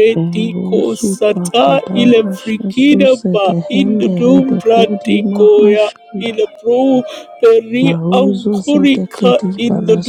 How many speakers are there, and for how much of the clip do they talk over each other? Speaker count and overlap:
2, about 74%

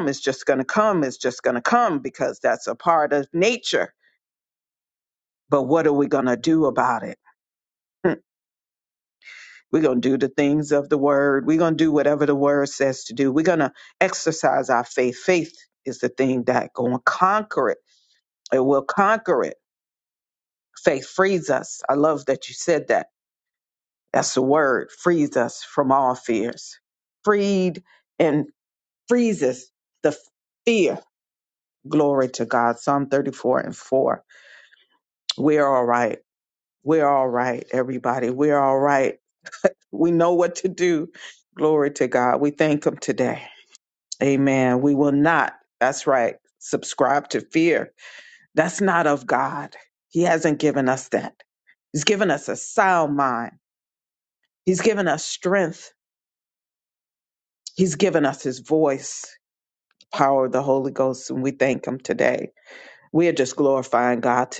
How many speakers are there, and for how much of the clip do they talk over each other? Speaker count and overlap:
1, no overlap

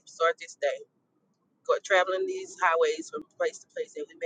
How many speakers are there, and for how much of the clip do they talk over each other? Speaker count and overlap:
1, no overlap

